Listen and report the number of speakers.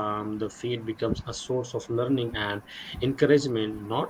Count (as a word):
one